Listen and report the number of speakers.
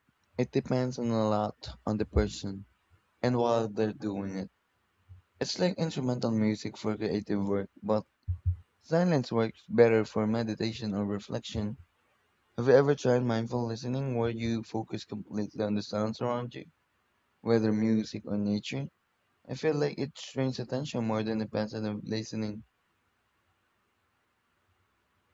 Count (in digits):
1